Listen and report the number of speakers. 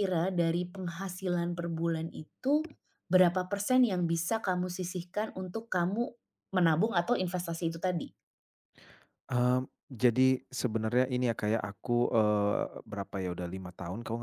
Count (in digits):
2